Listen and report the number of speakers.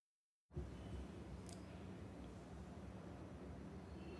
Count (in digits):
0